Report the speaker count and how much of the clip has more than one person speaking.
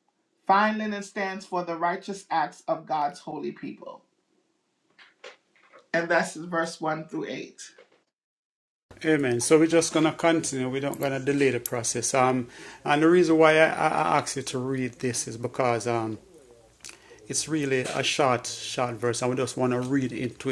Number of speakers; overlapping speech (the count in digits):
2, no overlap